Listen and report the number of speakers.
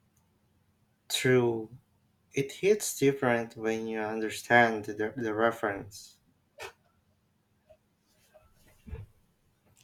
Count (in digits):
1